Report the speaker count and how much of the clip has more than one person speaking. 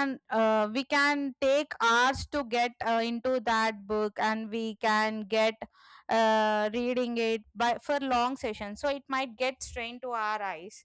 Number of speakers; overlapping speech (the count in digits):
1, no overlap